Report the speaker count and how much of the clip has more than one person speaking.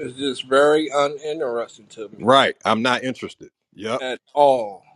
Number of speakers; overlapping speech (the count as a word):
two, about 2%